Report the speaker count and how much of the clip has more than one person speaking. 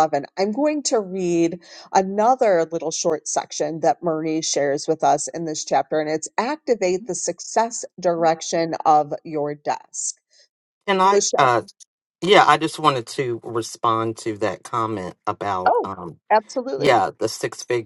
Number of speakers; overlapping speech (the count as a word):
two, about 5%